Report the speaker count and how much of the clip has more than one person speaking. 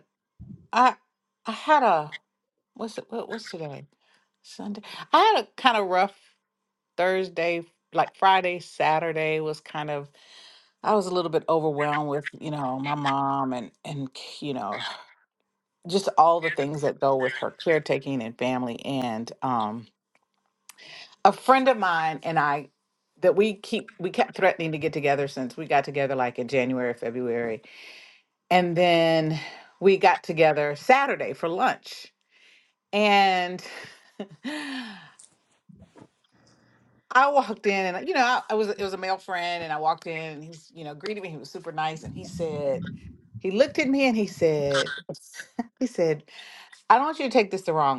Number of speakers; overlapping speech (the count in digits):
1, no overlap